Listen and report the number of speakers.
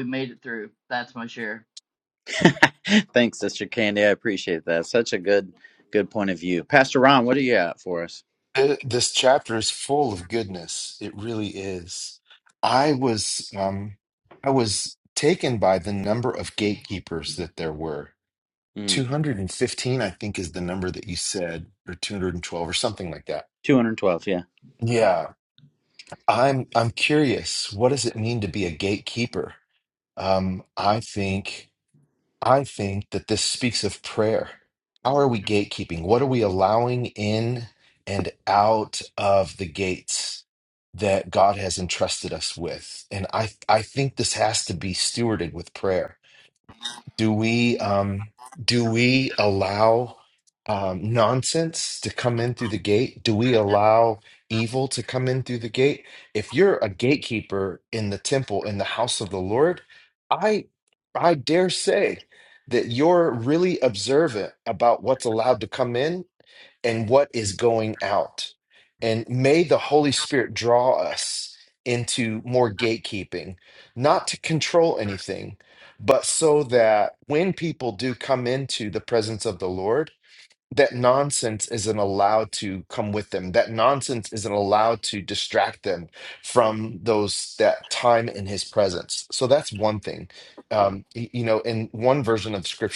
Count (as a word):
three